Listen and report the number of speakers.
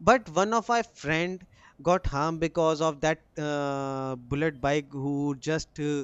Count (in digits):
1